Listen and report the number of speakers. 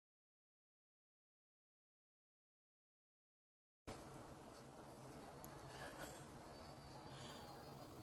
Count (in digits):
0